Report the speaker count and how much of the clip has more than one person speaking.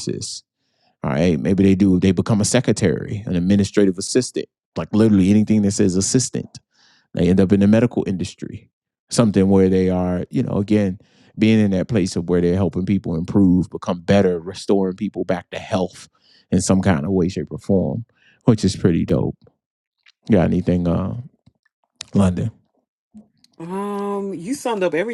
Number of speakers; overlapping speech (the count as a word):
two, no overlap